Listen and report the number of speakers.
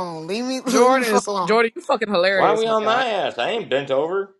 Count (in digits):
3